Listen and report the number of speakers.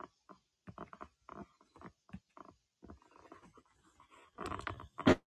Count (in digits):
0